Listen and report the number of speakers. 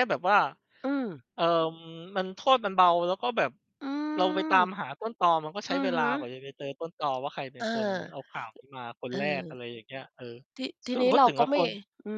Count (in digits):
2